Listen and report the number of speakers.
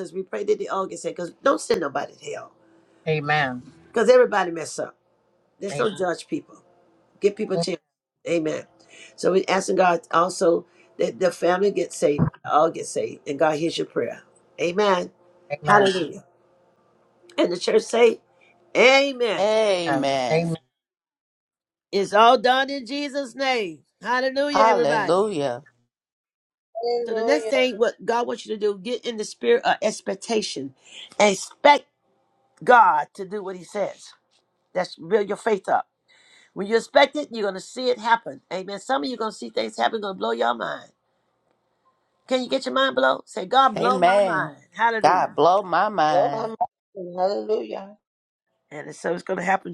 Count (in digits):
4